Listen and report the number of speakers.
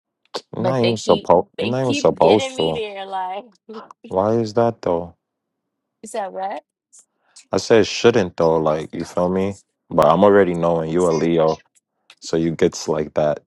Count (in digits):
2